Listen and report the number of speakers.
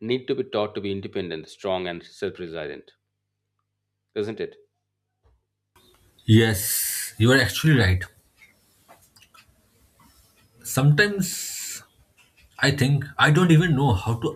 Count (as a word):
two